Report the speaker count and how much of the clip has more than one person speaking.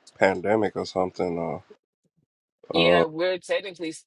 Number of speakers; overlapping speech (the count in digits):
2, about 8%